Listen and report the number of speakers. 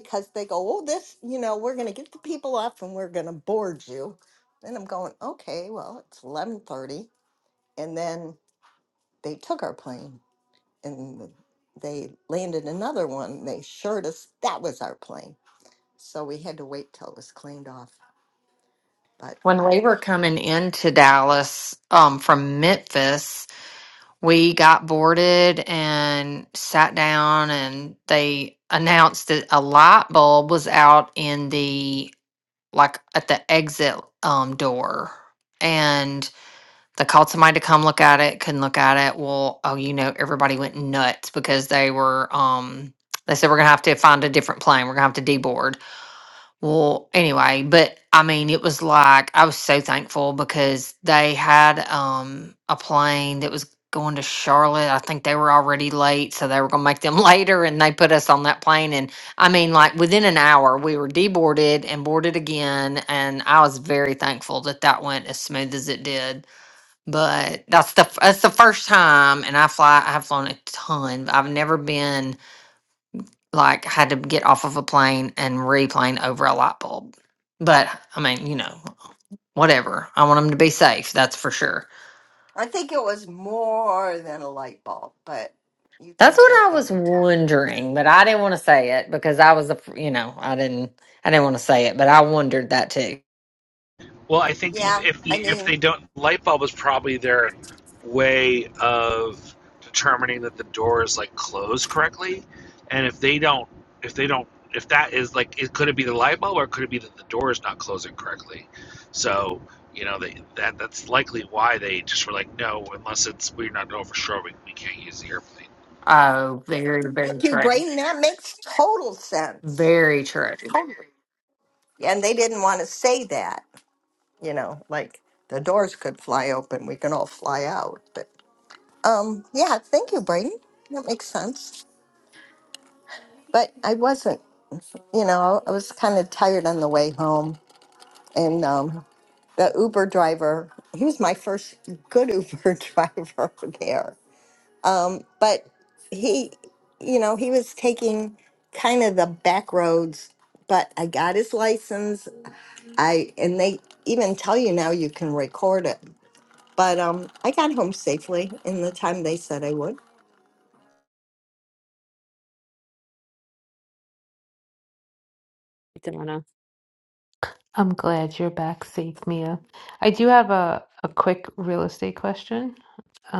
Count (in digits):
4